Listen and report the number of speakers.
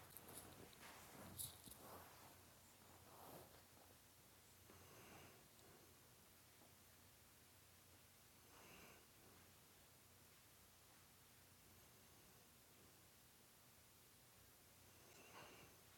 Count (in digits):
0